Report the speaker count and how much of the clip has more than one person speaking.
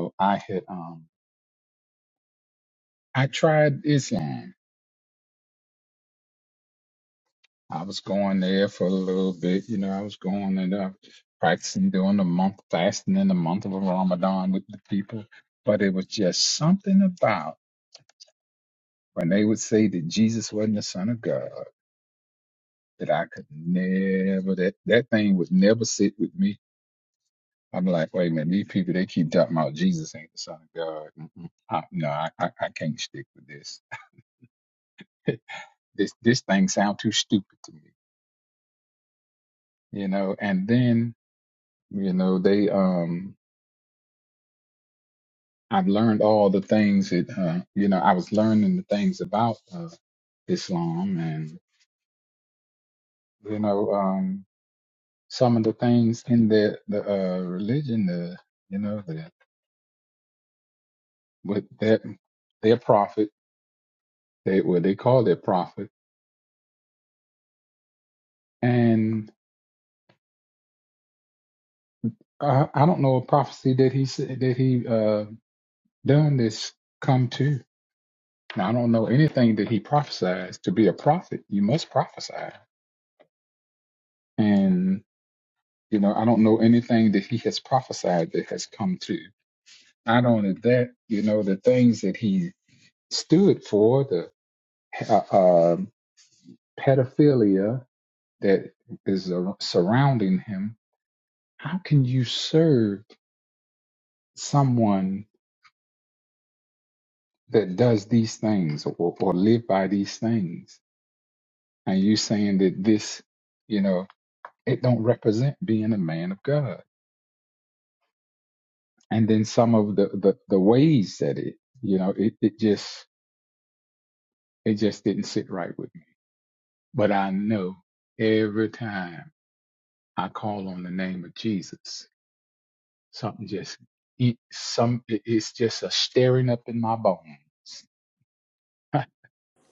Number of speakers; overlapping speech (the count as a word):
one, no overlap